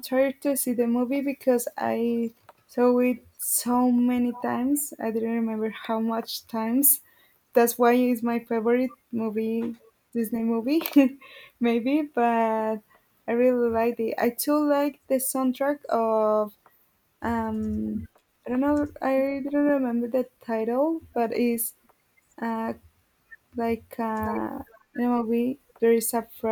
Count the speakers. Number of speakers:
1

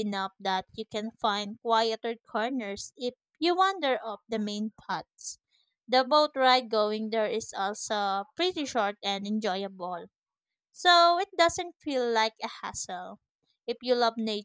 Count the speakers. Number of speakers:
1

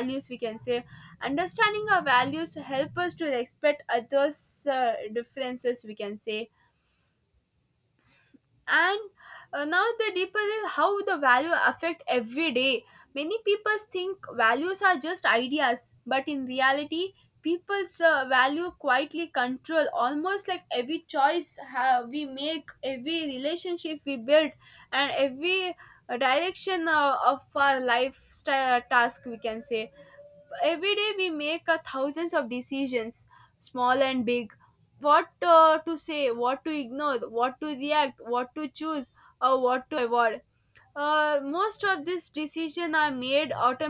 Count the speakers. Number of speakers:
1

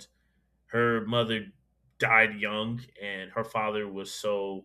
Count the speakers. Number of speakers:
1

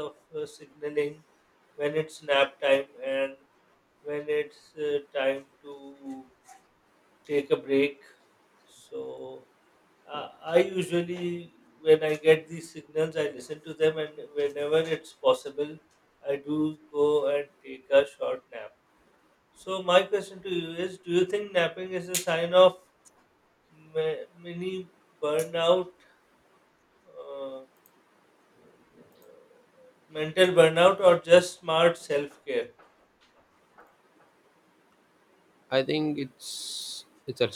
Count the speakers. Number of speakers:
2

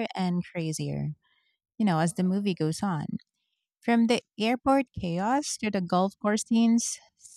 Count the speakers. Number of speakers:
1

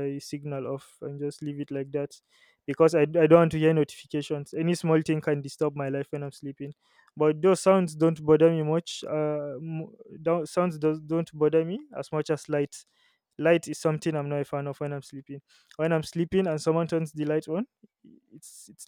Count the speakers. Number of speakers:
1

